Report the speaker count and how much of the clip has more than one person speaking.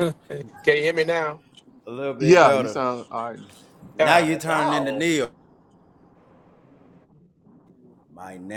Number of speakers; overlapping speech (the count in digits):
3, about 20%